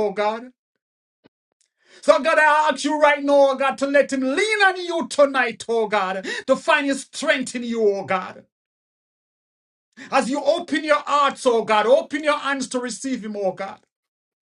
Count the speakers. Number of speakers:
1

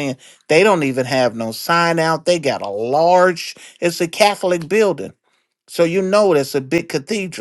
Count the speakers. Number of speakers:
1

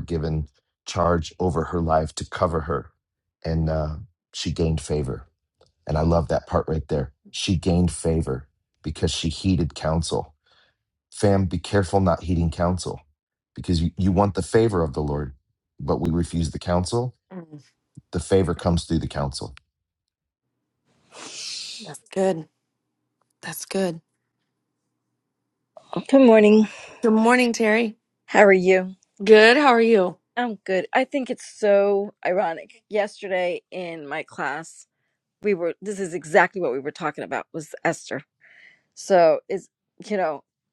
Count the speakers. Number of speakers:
3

